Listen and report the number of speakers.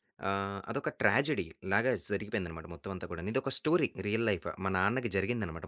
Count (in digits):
1